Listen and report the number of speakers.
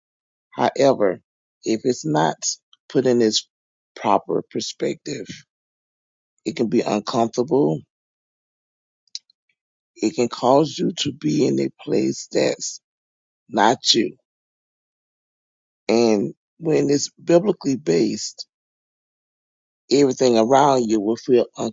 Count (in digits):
1